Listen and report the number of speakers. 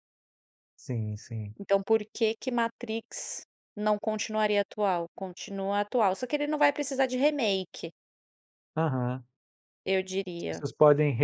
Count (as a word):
two